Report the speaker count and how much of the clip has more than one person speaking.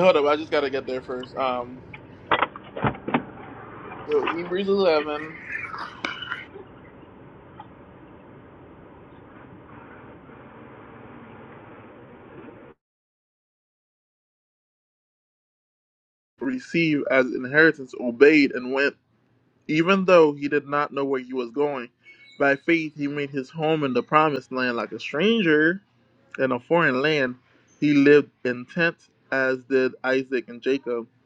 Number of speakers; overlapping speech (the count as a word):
one, no overlap